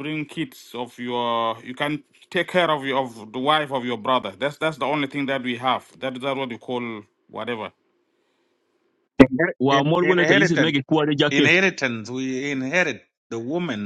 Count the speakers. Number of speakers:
three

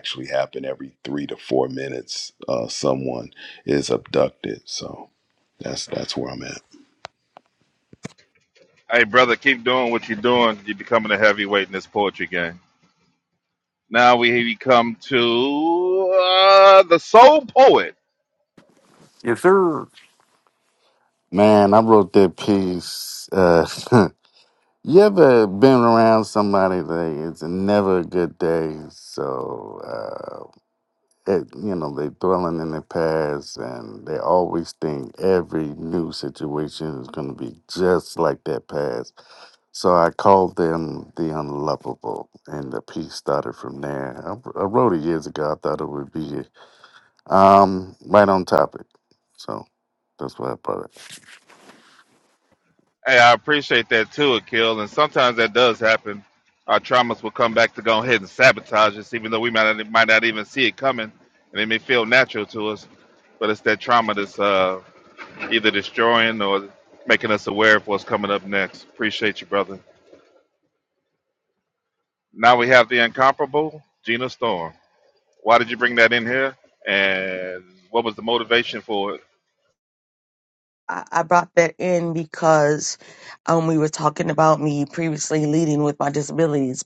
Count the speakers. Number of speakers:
four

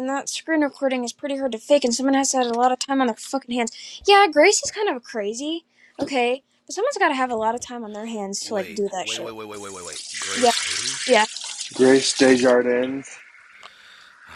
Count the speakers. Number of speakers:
three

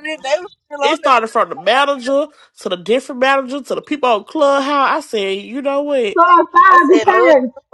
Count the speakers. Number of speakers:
three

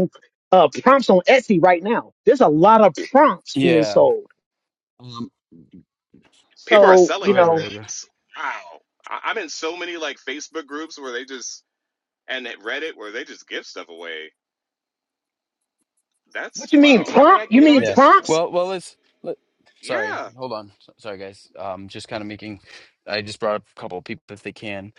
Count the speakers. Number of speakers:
three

